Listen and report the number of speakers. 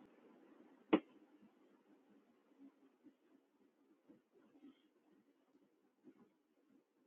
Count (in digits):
0